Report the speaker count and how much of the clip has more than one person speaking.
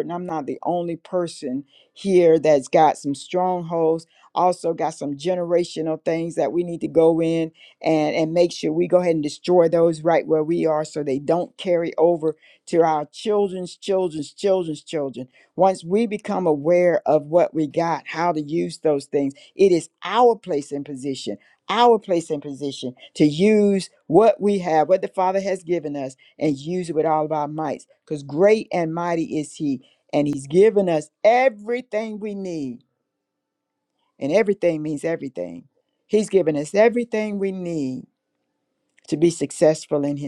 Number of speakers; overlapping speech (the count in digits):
1, no overlap